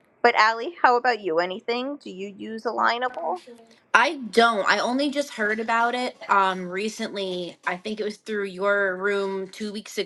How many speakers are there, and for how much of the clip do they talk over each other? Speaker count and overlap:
2, no overlap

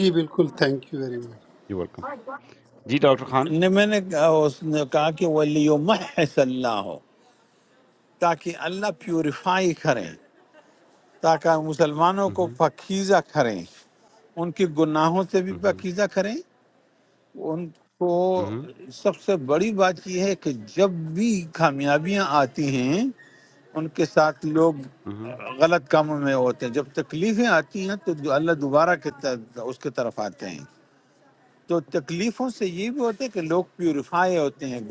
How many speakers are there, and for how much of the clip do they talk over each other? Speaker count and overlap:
3, about 1%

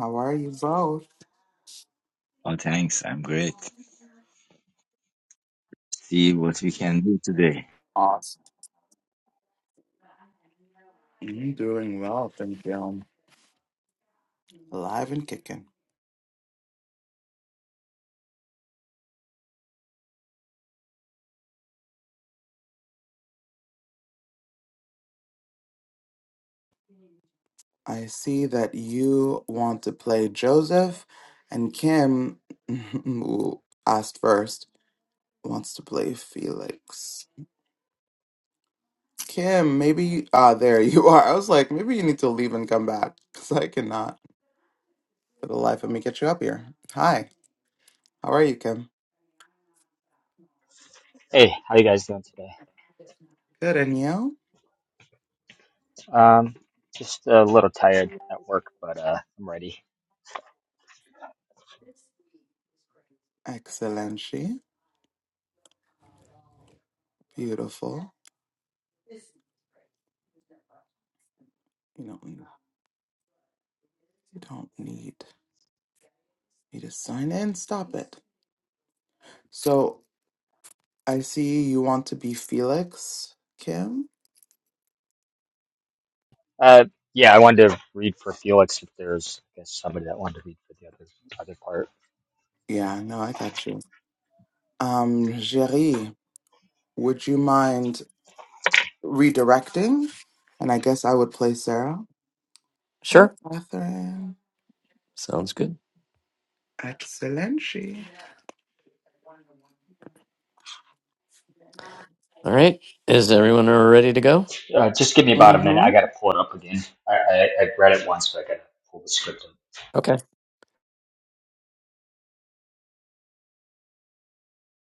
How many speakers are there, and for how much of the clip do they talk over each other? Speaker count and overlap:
4, about 1%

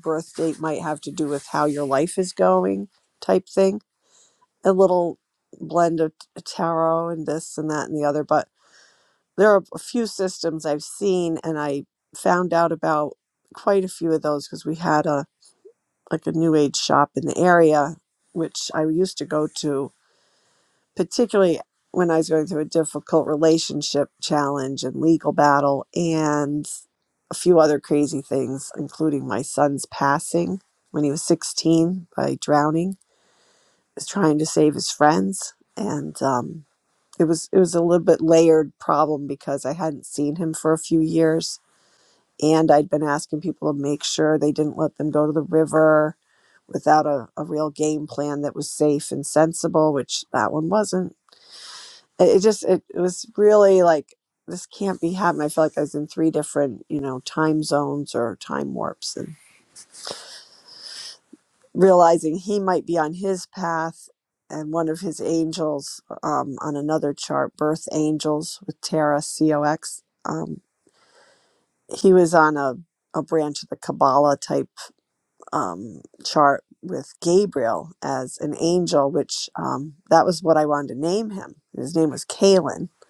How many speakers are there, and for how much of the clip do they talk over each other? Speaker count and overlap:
1, no overlap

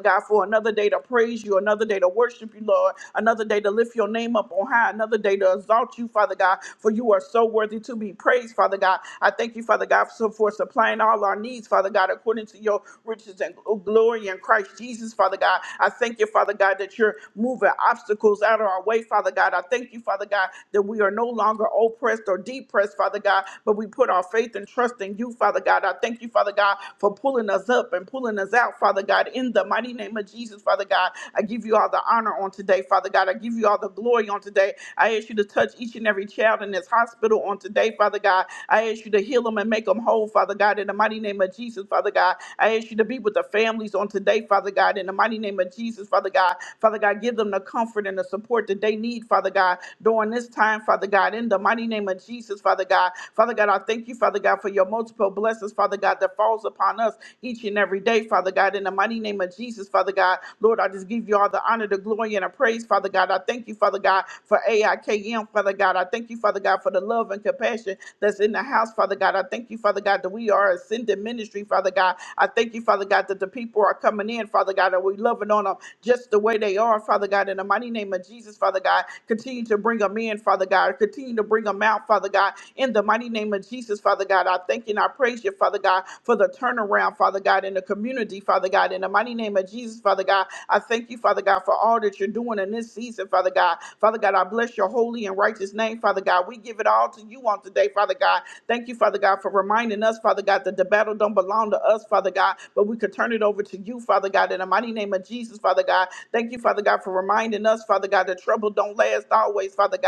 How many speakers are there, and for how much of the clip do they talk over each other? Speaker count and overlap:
1, no overlap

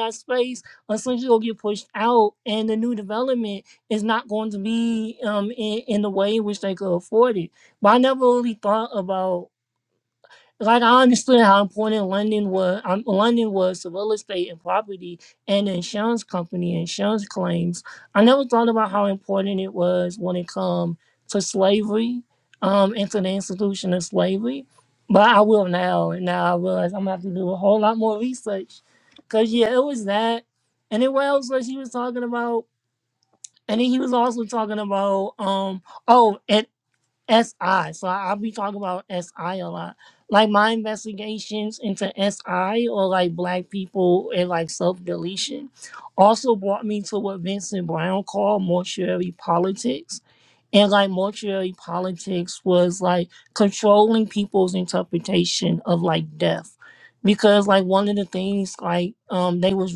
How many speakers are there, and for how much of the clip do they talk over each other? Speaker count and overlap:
1, no overlap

